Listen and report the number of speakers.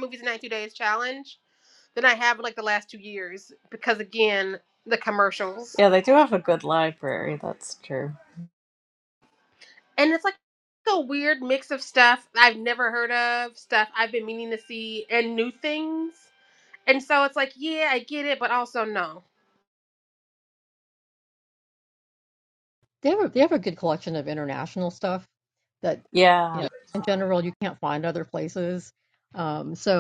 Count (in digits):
3